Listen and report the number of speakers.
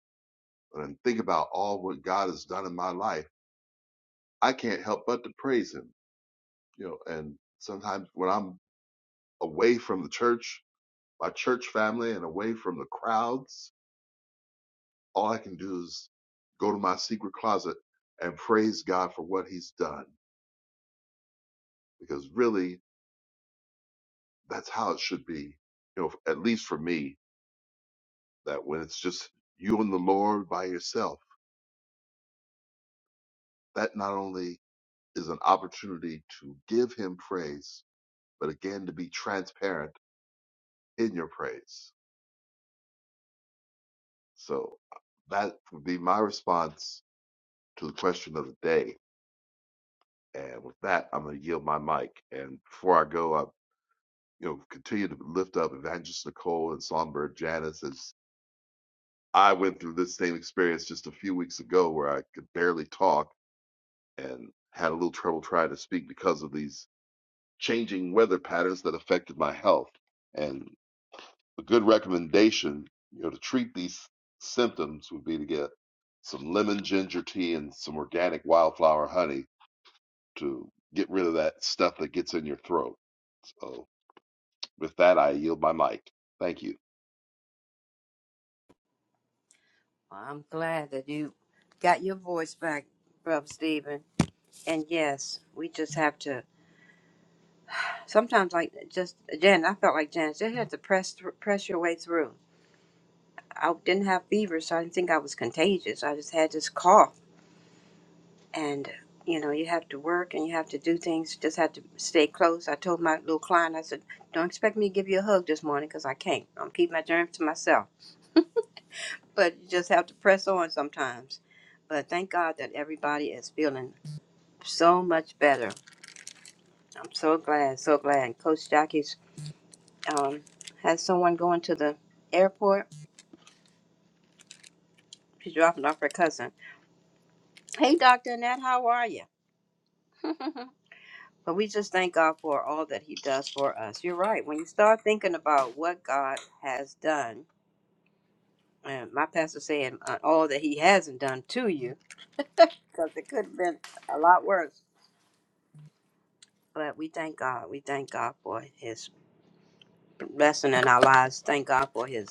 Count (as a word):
two